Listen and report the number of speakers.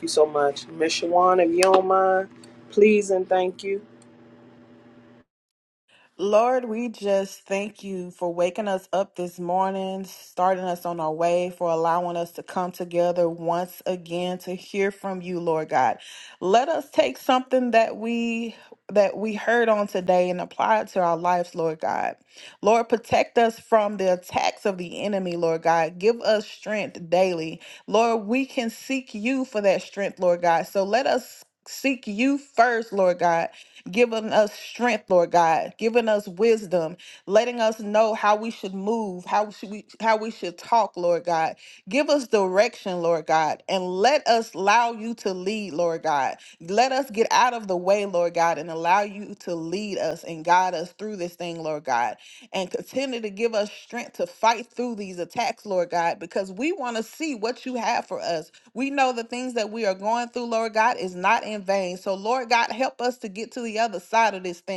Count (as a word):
two